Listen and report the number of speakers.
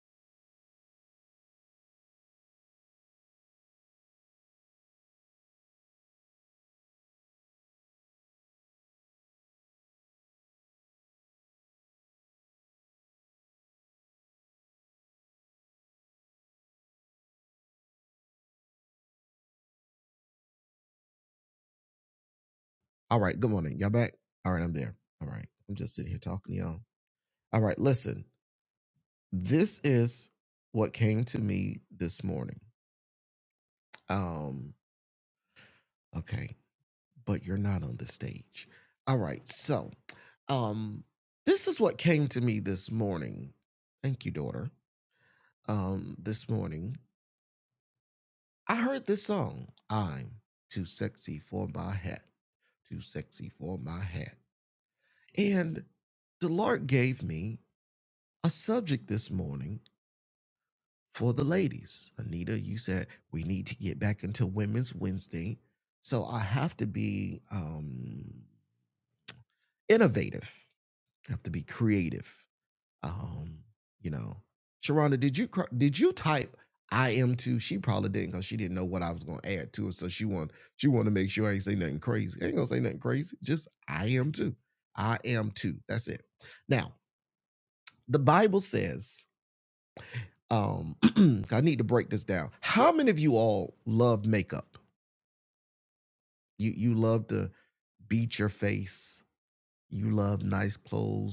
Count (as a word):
one